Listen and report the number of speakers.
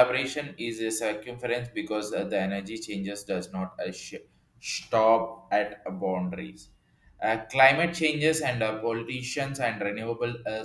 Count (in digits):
1